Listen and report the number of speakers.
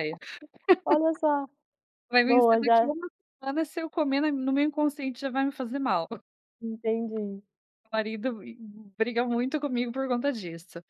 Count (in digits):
2